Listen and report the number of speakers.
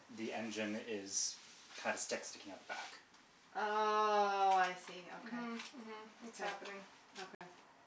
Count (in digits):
3